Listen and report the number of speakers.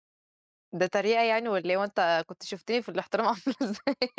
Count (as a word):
one